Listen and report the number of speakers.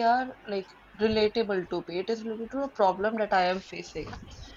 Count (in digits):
1